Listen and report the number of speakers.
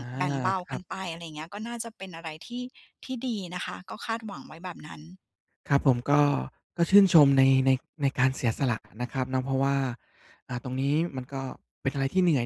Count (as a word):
two